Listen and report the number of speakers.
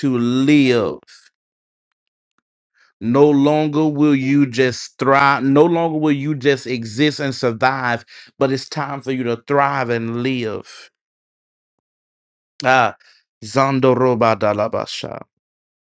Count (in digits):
1